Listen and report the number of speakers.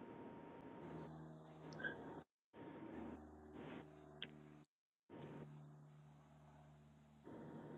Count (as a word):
zero